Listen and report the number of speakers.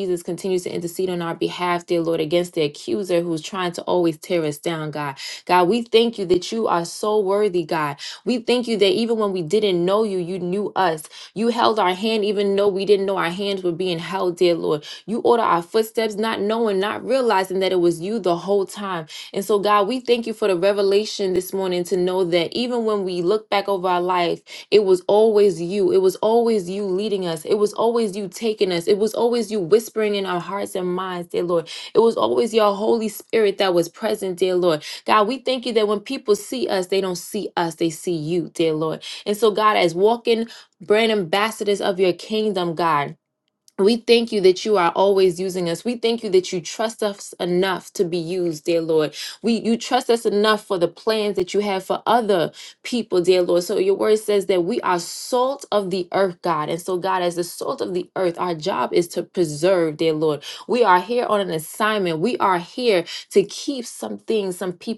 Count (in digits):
1